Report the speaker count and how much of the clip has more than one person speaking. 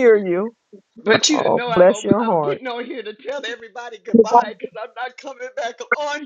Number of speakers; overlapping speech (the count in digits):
2, about 21%